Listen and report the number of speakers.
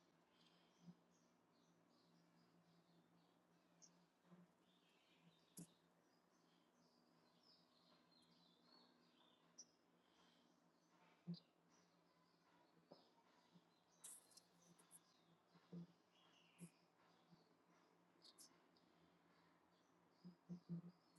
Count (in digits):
0